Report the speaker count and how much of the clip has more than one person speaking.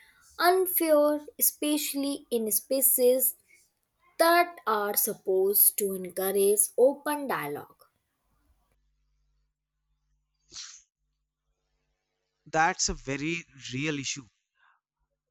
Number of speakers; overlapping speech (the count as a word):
two, no overlap